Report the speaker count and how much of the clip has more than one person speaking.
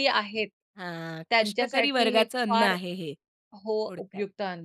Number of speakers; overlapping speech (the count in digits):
2, about 39%